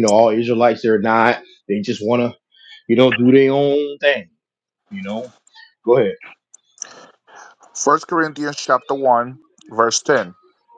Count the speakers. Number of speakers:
2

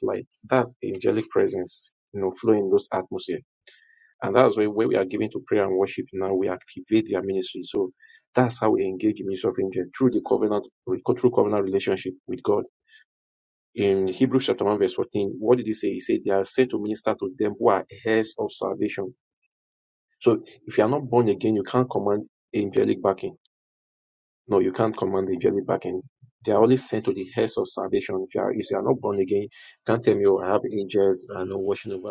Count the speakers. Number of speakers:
1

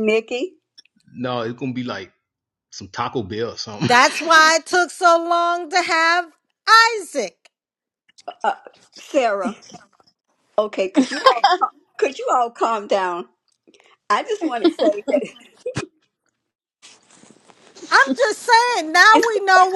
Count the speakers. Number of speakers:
3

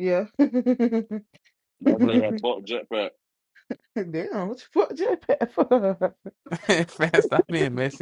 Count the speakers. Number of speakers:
3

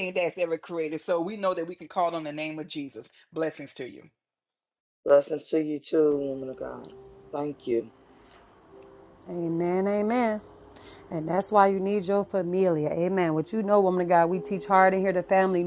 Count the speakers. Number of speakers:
3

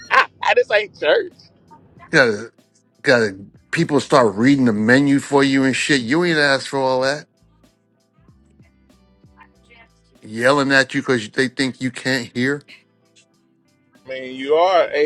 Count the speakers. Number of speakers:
2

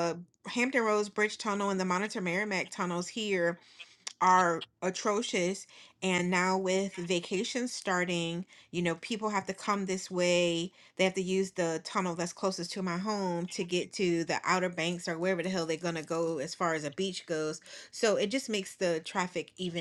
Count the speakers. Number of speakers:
1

